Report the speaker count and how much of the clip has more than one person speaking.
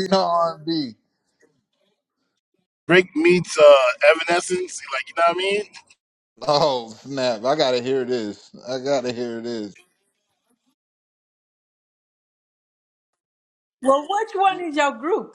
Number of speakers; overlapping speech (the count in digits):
3, no overlap